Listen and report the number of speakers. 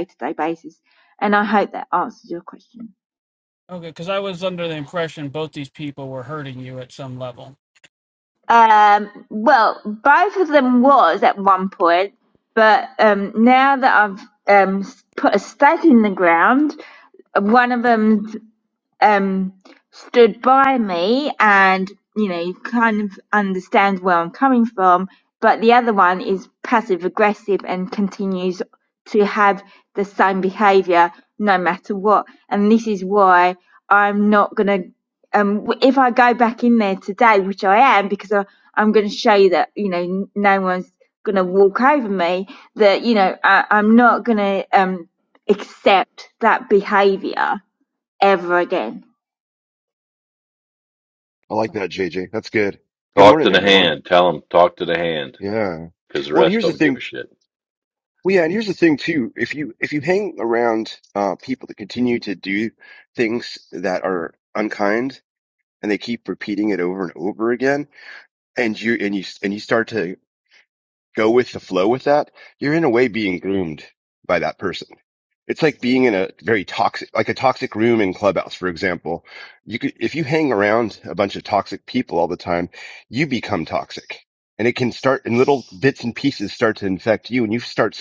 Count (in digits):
4